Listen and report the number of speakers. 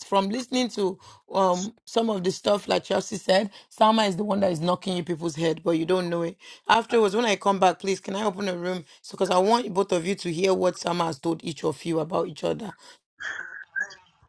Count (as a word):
one